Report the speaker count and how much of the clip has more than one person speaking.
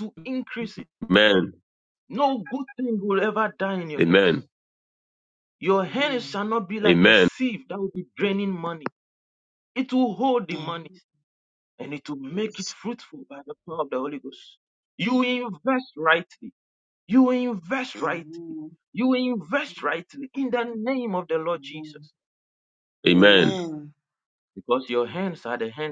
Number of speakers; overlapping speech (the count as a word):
three, about 13%